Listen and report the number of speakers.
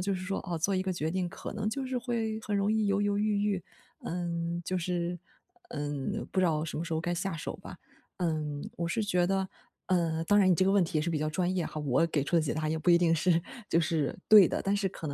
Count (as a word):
one